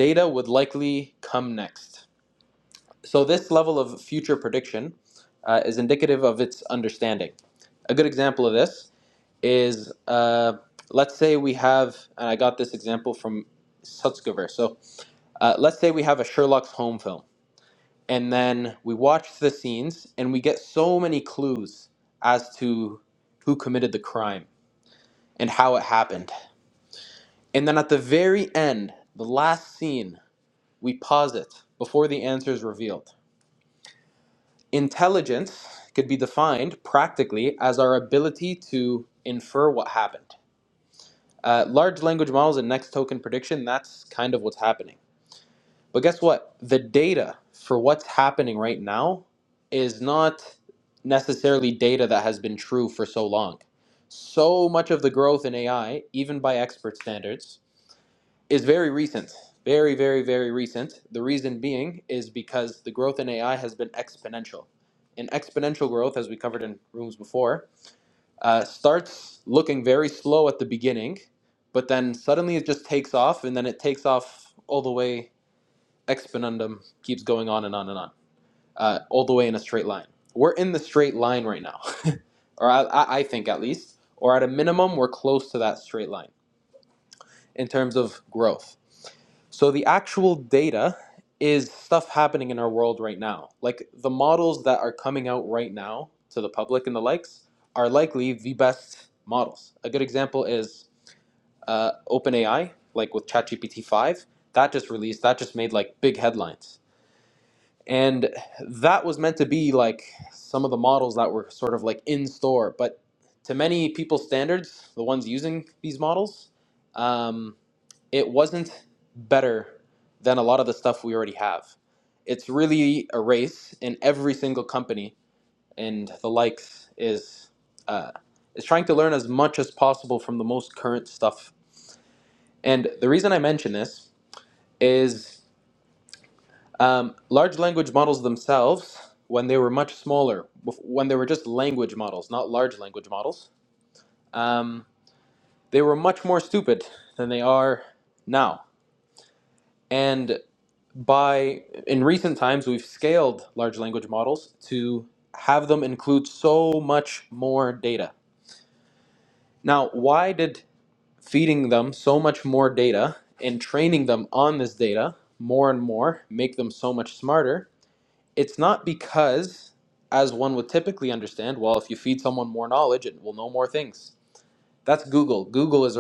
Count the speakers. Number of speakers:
1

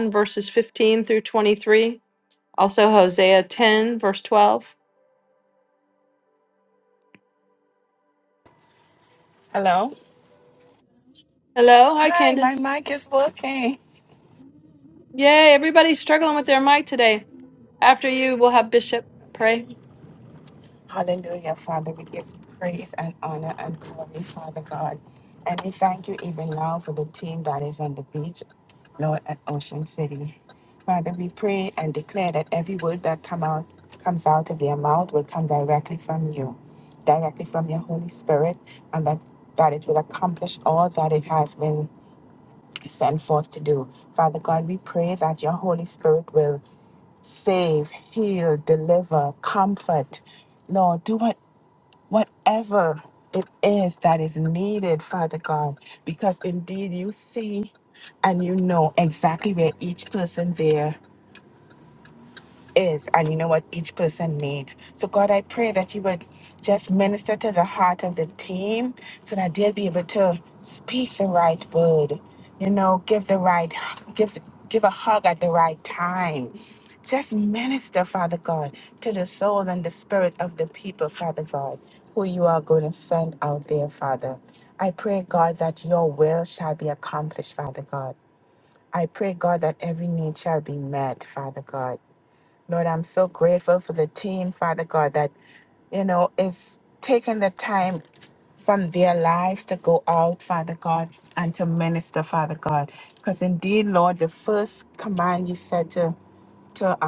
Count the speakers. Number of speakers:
2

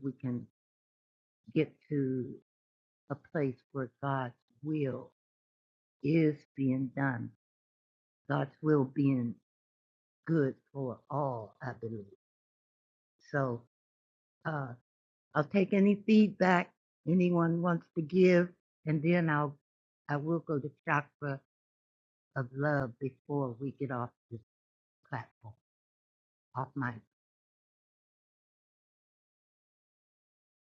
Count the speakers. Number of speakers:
1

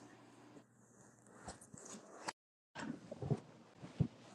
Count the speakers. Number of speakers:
0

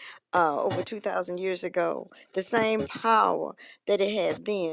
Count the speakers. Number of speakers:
1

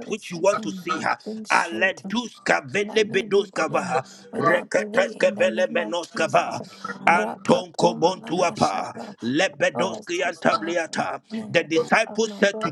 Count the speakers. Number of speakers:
2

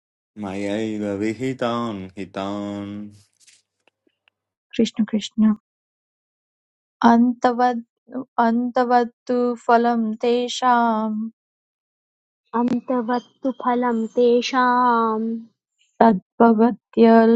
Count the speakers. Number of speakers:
3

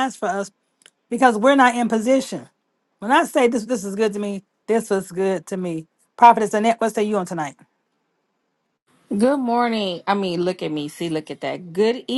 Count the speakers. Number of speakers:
2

